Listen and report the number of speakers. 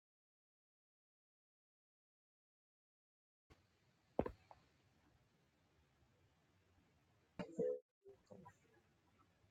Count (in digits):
0